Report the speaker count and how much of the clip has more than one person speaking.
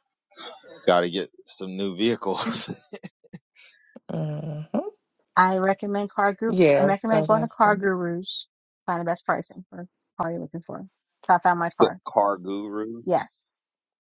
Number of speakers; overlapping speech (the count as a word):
three, about 7%